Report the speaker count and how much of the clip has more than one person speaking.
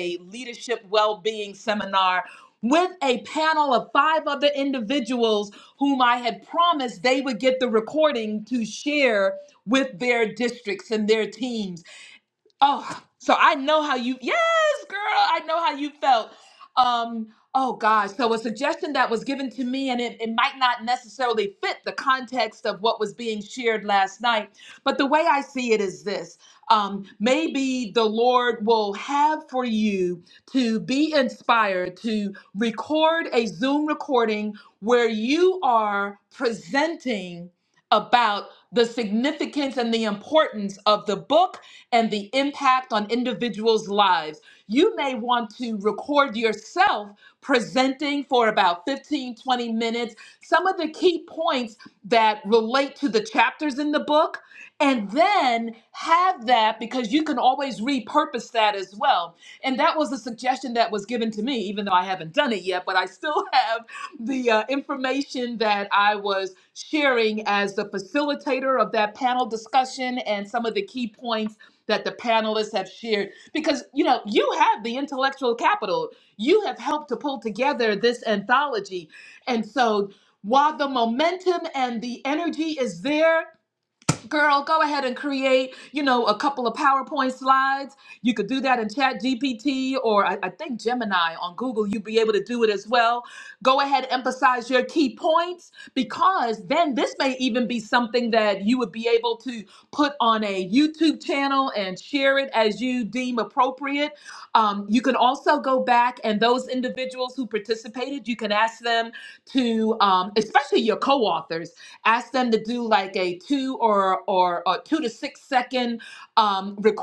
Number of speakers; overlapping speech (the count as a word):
one, no overlap